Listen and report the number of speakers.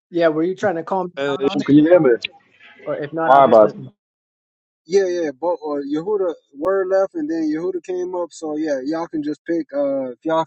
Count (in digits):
3